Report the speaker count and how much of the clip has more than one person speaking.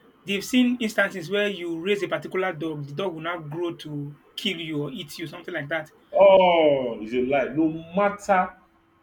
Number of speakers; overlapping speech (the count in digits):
2, no overlap